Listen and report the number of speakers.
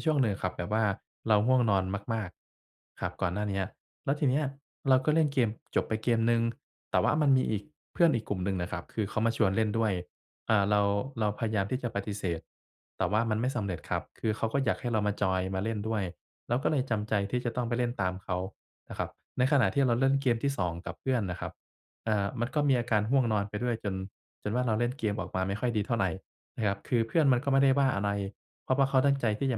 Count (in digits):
1